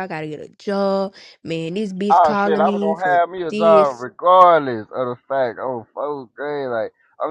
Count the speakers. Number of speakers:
2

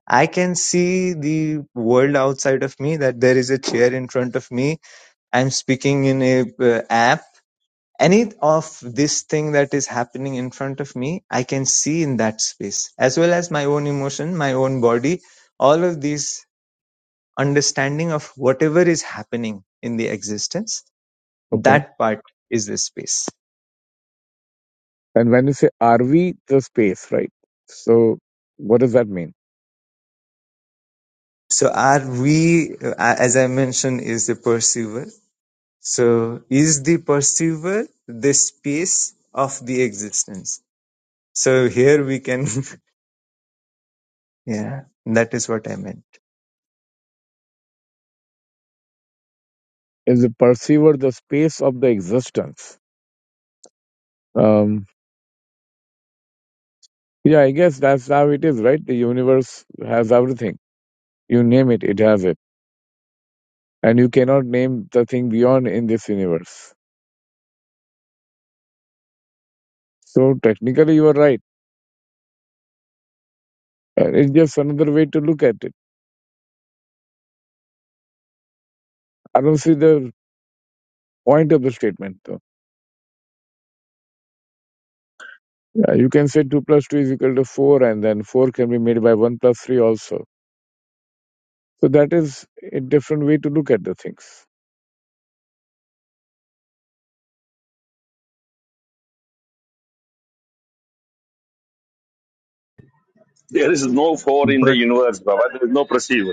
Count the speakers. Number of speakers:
3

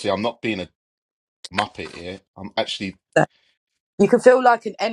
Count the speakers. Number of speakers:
2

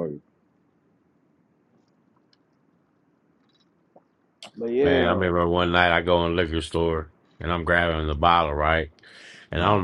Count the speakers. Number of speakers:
2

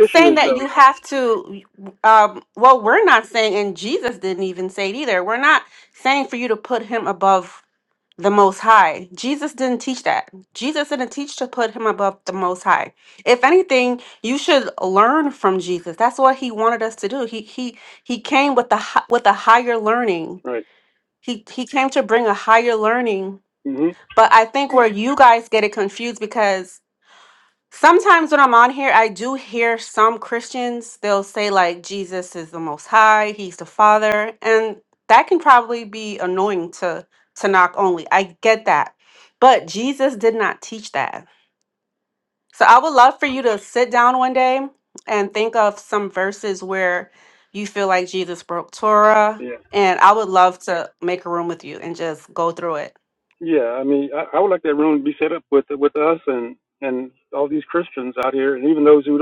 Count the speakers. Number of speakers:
2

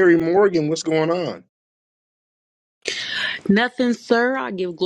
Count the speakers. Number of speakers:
2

